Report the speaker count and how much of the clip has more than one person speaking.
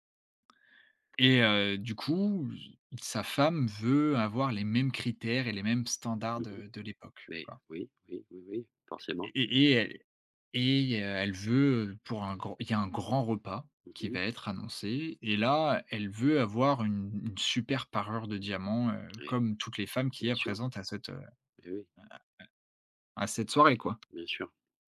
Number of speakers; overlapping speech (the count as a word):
two, about 5%